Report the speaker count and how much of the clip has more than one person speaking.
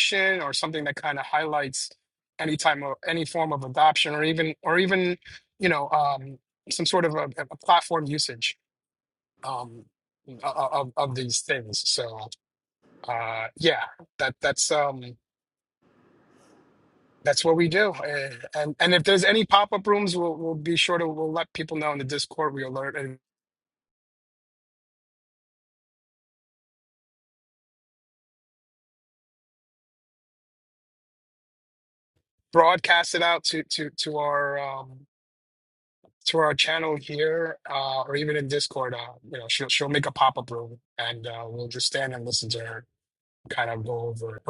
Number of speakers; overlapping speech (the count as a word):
one, no overlap